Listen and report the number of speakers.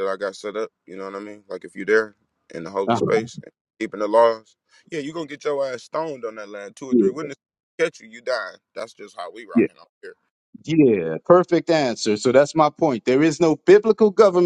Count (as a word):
two